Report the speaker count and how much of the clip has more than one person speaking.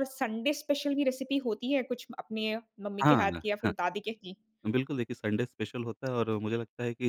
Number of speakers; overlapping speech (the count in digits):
2, about 6%